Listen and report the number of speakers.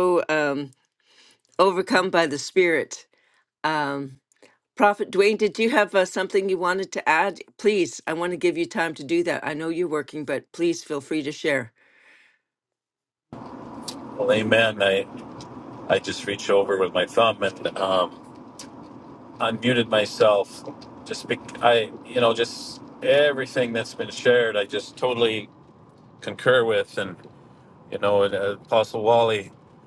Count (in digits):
2